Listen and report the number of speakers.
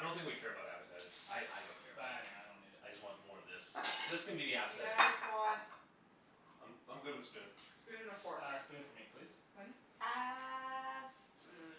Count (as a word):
four